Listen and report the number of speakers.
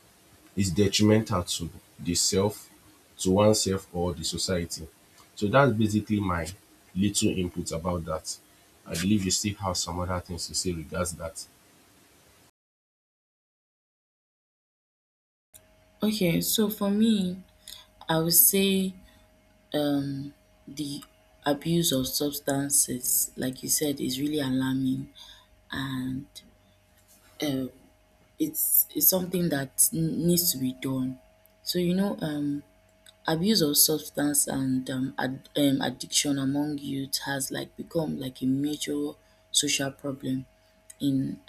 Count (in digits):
2